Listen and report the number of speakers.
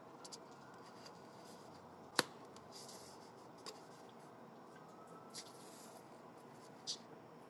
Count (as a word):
zero